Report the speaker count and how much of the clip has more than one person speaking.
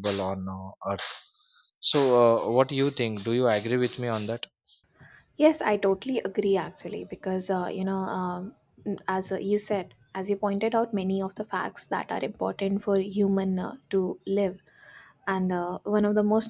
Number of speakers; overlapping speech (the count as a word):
two, no overlap